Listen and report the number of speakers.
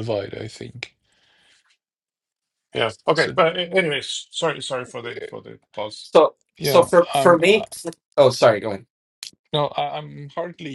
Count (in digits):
3